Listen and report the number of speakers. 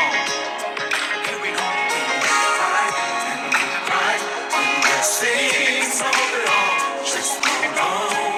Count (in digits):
0